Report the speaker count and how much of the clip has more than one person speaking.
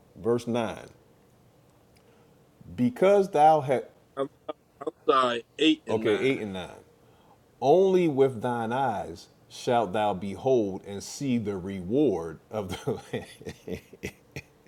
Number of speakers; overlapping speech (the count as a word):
two, about 3%